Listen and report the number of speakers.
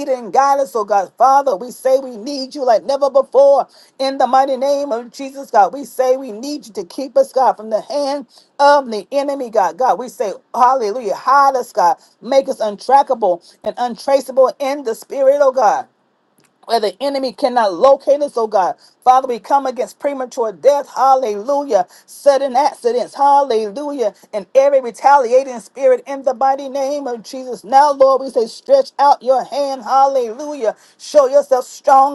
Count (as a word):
one